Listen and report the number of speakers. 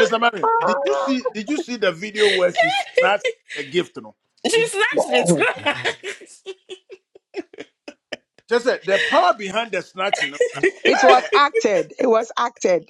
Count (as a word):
three